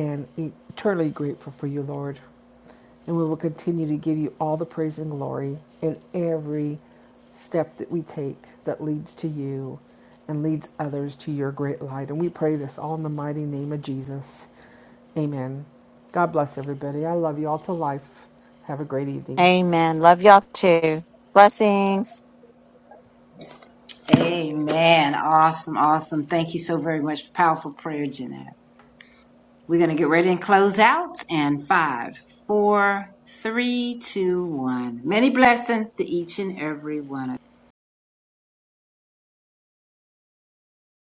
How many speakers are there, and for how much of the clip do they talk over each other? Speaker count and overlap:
three, under 1%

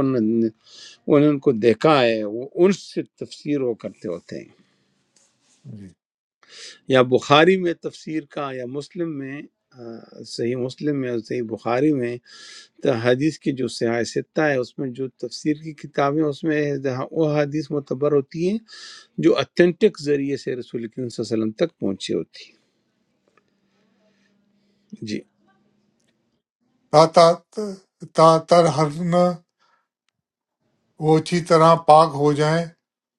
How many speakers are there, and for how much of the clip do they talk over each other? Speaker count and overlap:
two, no overlap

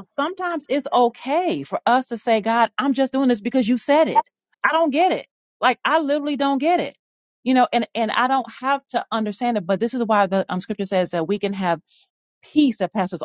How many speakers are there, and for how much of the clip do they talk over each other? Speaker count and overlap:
one, no overlap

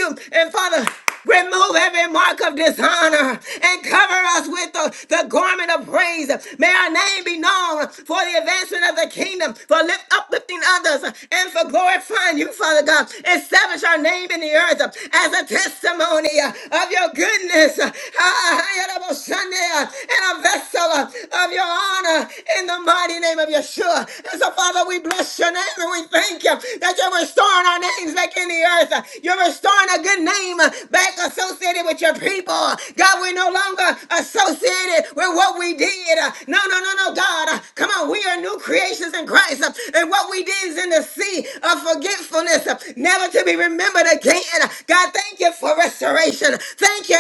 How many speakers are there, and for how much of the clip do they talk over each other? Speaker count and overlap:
one, no overlap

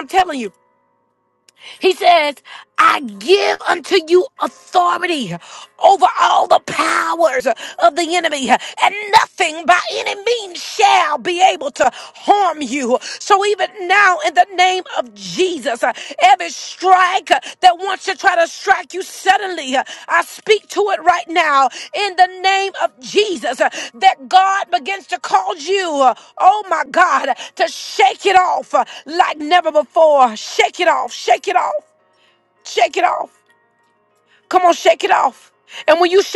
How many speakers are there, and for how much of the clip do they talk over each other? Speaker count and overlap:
one, no overlap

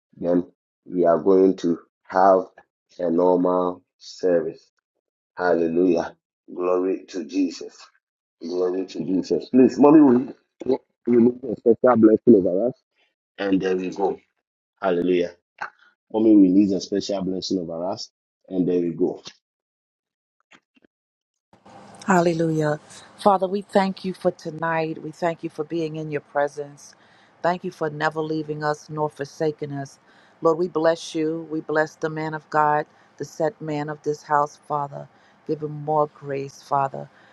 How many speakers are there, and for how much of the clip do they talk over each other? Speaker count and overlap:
two, no overlap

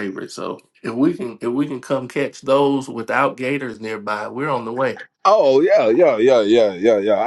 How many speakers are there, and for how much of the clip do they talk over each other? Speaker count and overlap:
two, no overlap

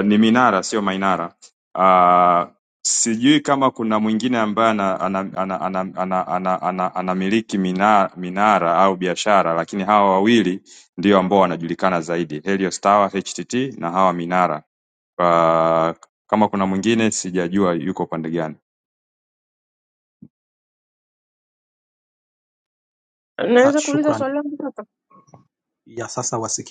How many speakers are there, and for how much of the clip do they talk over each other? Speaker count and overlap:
three, about 2%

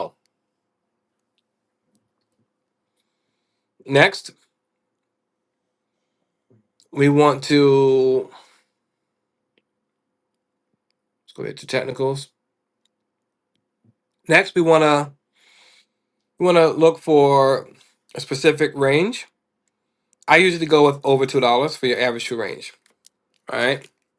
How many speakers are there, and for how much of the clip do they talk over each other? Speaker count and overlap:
one, no overlap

